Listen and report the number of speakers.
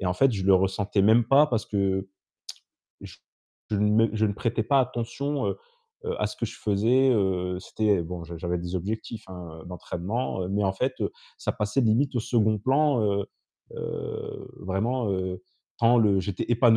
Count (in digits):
1